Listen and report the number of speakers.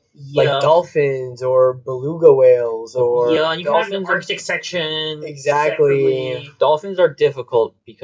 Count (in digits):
3